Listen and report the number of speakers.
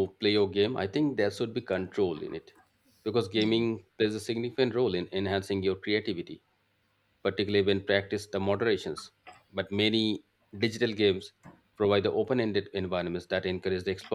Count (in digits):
1